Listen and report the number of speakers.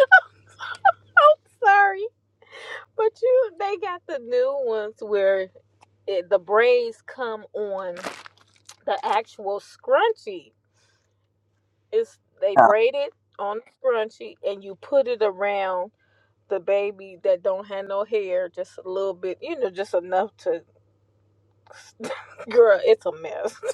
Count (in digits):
1